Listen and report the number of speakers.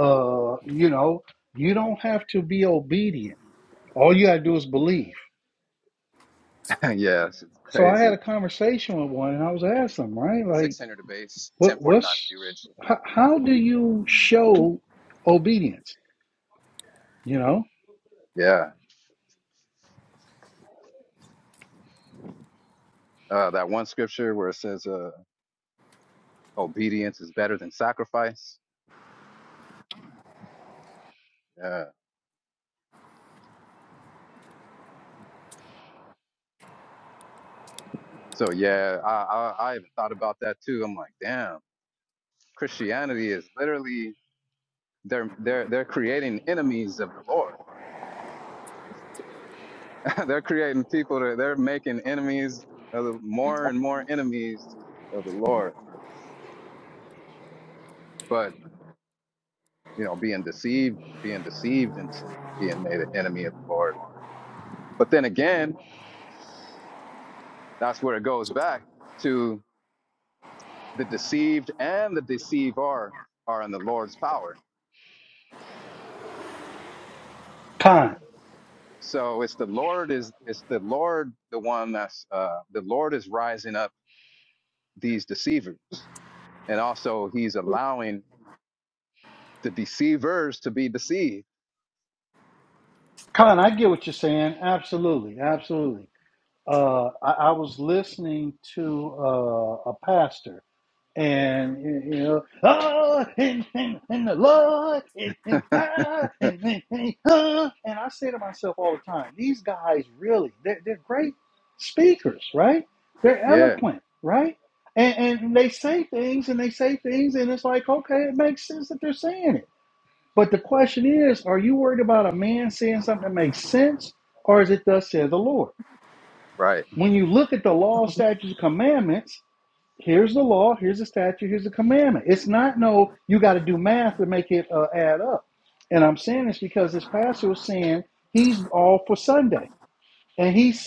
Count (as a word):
two